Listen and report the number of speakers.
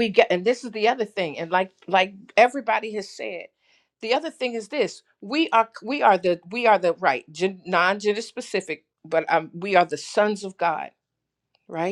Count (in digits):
1